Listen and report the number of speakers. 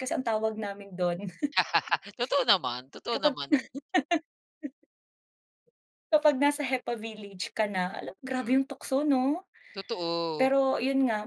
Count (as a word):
two